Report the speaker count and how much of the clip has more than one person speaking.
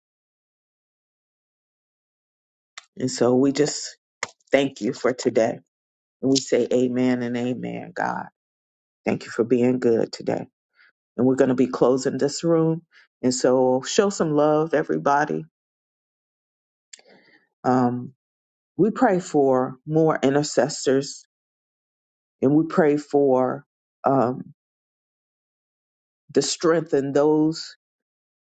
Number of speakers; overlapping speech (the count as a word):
one, no overlap